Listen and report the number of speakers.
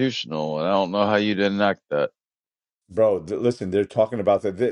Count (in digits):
2